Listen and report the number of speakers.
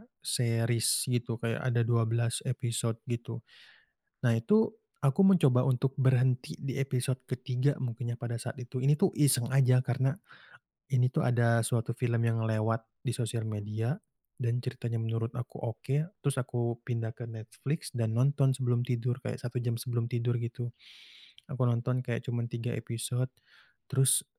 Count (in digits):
1